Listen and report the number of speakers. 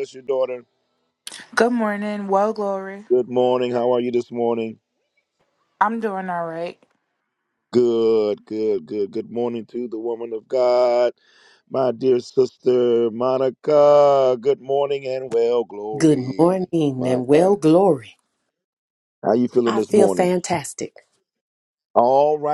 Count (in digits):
3